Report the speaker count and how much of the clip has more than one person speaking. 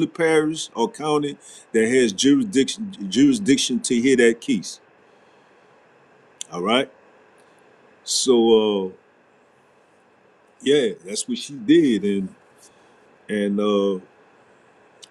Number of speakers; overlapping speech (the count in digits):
1, no overlap